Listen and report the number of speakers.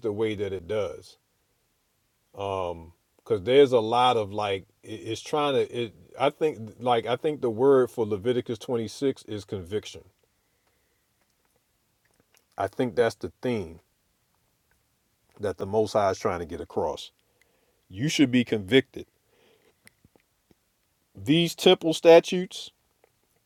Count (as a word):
one